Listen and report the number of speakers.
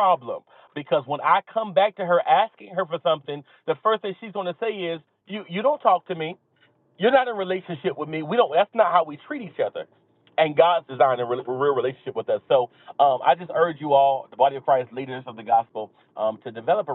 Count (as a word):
one